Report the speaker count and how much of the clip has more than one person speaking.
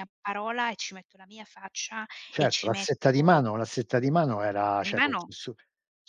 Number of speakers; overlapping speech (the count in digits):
2, about 25%